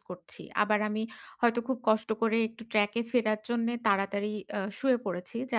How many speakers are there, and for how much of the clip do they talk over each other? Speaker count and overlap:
1, no overlap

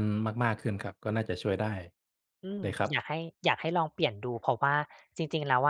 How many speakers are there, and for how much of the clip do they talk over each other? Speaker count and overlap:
2, about 5%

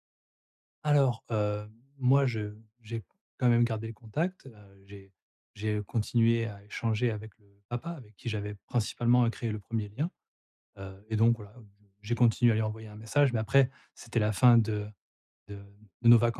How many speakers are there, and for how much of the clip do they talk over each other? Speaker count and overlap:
1, no overlap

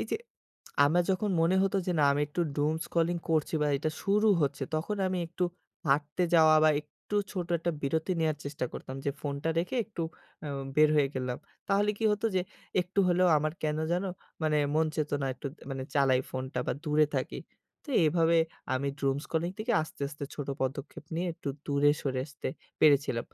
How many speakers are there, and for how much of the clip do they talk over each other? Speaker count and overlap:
1, no overlap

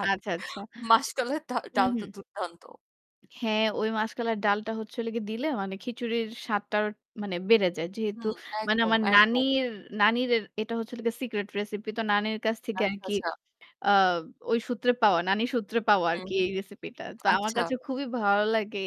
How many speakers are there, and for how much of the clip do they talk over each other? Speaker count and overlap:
2, about 13%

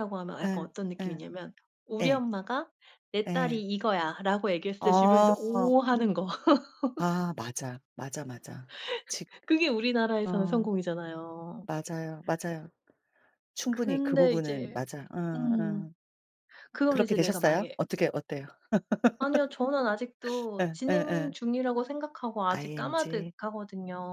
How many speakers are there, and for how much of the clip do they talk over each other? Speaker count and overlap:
2, about 26%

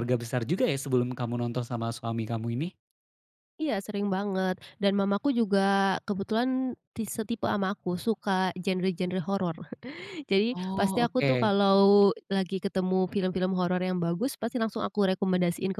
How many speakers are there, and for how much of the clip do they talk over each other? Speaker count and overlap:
2, about 6%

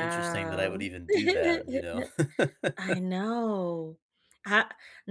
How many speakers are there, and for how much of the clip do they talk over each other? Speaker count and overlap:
2, about 14%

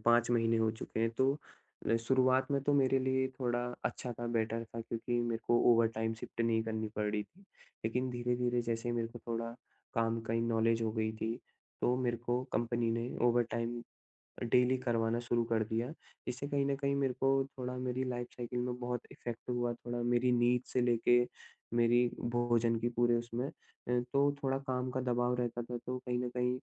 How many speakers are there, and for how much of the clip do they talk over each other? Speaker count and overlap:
1, no overlap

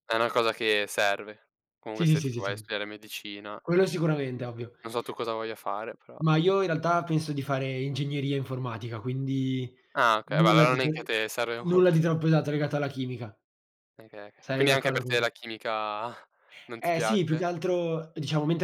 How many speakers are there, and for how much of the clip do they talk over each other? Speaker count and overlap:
2, about 16%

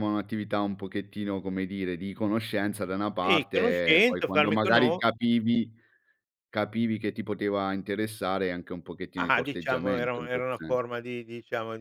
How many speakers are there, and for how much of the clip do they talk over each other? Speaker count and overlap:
2, about 29%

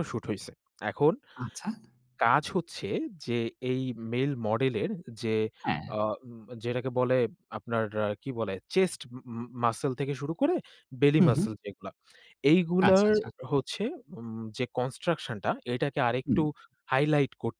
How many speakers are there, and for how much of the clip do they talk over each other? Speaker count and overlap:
2, about 5%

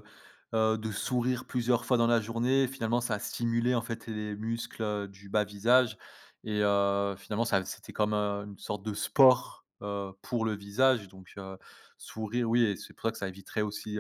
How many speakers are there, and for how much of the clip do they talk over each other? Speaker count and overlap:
1, no overlap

